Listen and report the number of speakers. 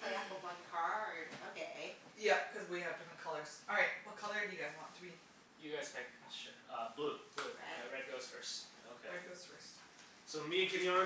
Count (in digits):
4